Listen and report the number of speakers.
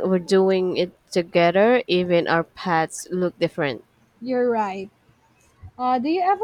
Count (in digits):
2